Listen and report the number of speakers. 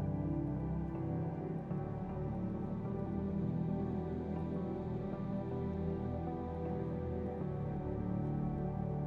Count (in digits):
0